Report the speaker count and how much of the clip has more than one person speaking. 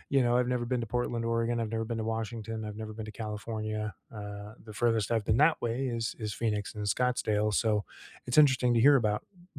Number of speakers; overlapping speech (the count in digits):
1, no overlap